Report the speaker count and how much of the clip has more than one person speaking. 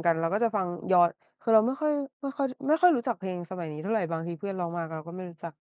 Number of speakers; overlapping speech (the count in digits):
1, no overlap